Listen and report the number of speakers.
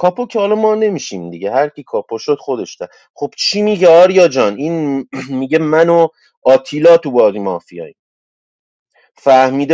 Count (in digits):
1